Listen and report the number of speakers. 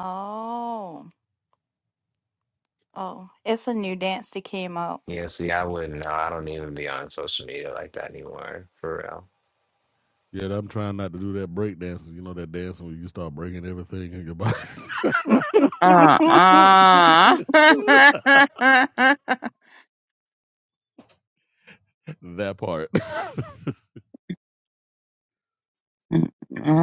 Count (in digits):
4